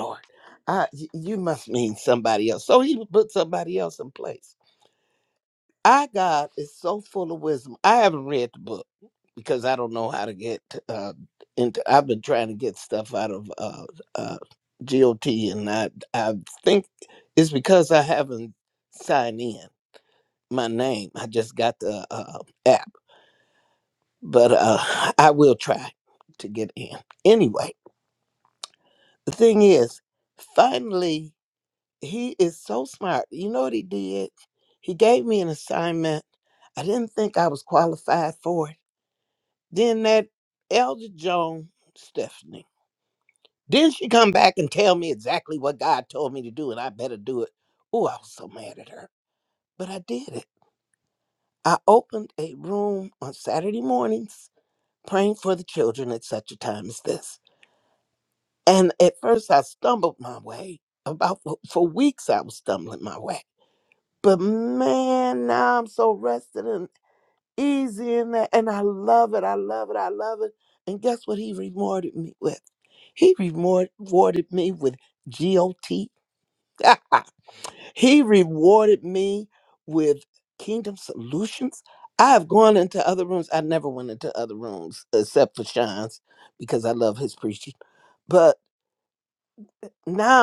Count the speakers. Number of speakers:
one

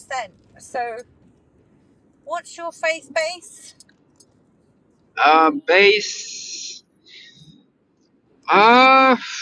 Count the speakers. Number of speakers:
two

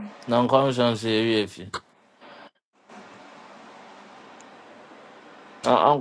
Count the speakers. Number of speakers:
one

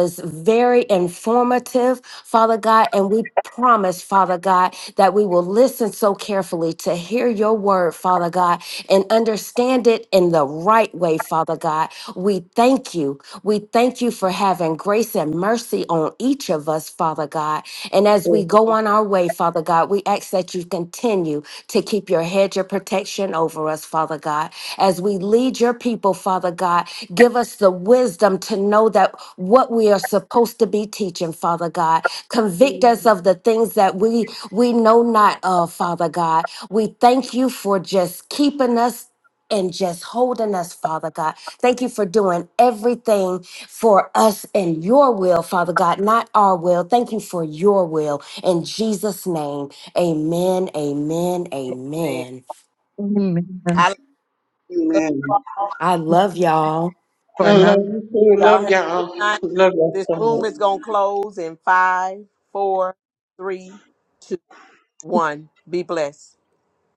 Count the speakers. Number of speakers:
four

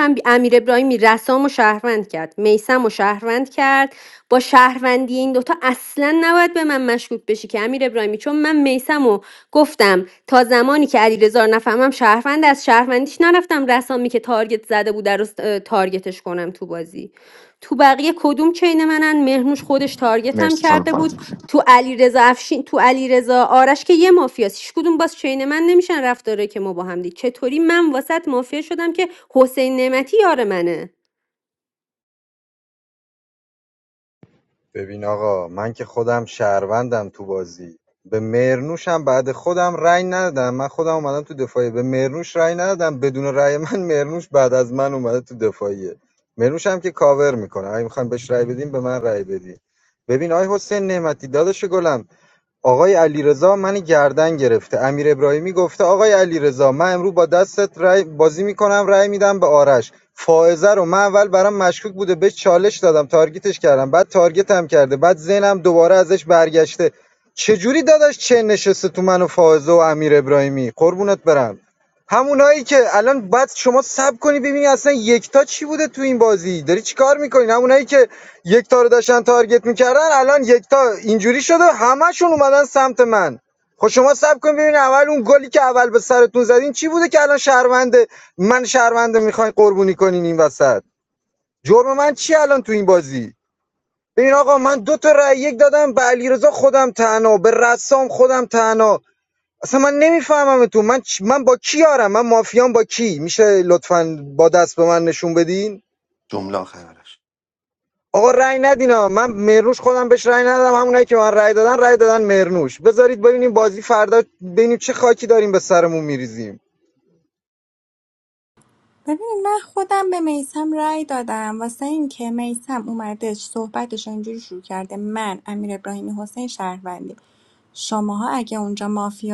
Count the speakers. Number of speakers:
four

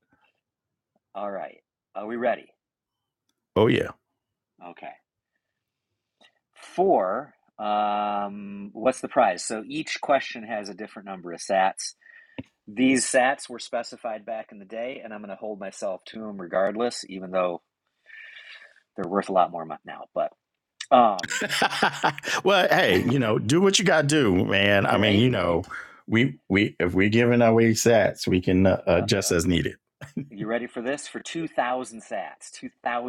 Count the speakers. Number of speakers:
two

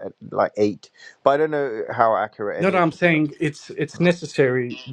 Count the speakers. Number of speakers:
two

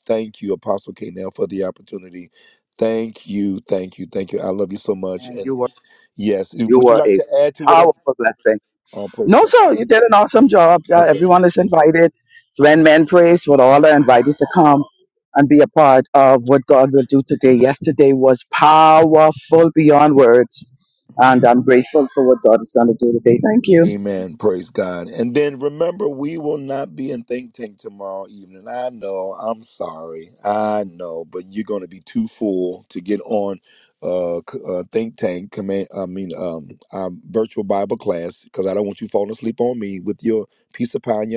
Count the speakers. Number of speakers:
two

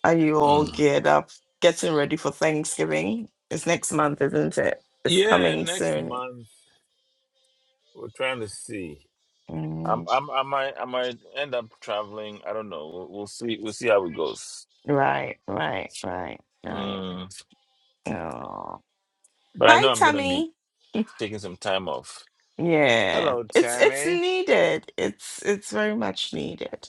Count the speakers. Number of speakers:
two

